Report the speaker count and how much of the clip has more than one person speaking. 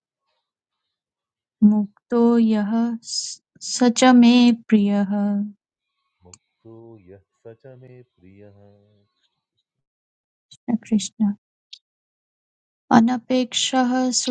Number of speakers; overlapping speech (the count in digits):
2, no overlap